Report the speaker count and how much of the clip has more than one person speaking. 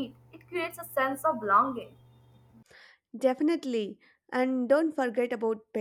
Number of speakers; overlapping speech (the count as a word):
two, no overlap